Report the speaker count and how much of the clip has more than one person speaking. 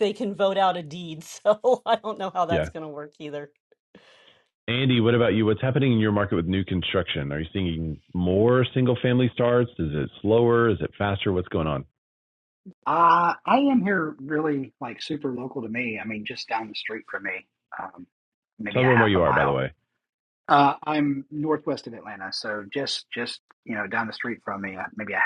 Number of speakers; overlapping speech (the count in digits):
3, about 4%